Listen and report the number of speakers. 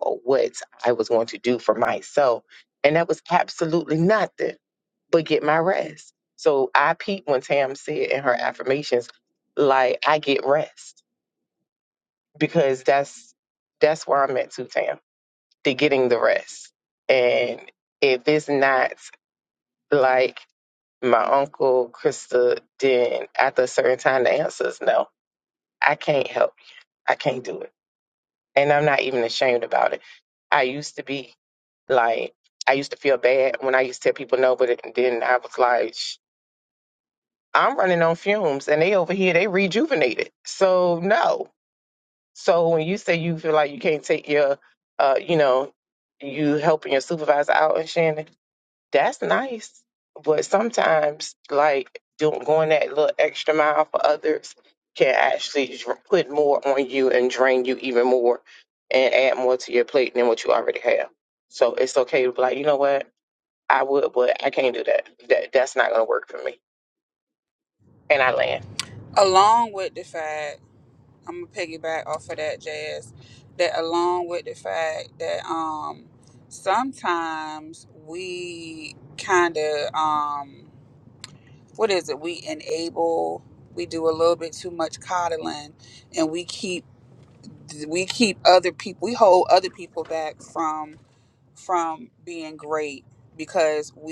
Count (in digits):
2